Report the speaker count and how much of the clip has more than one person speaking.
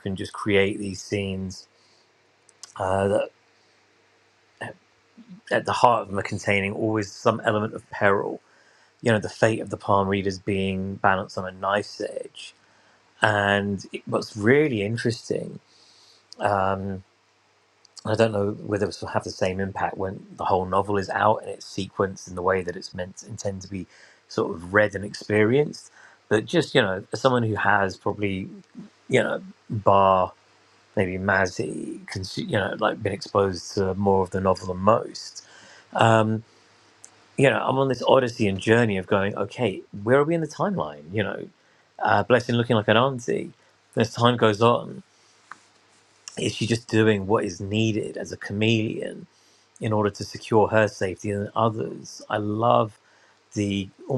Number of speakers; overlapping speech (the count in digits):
1, no overlap